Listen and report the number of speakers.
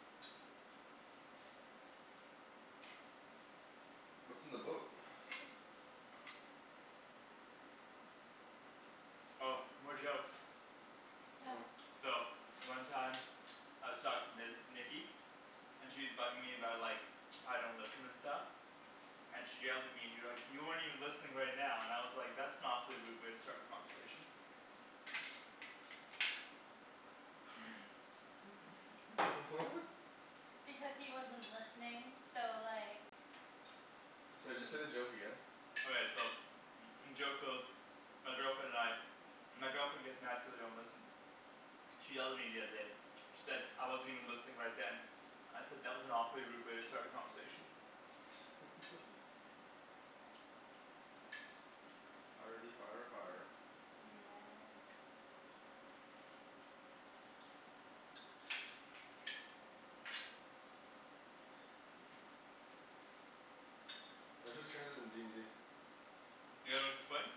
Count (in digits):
3